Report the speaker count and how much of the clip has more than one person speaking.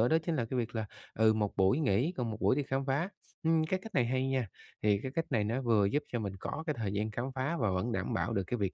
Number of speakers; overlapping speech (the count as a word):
one, no overlap